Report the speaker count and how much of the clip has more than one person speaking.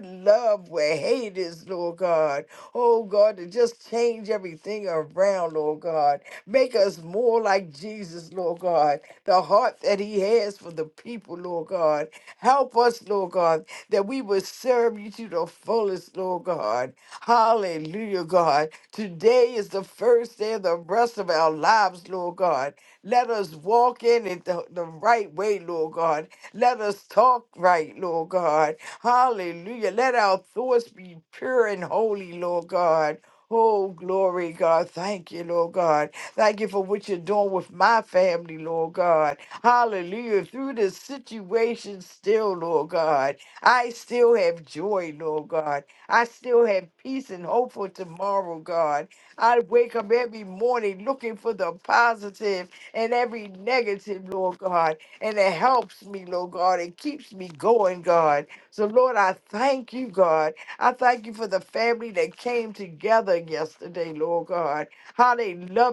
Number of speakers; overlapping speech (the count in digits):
1, no overlap